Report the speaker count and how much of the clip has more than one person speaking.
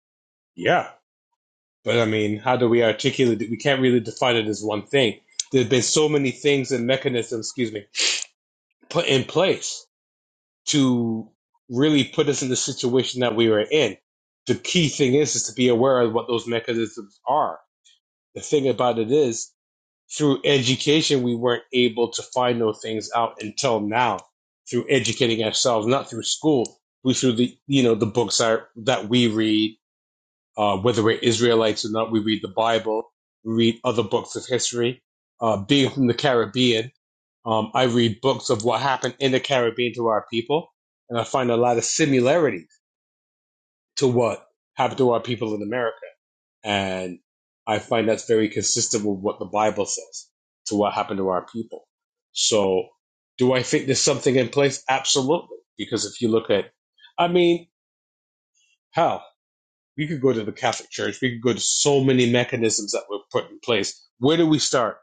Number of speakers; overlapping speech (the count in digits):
1, no overlap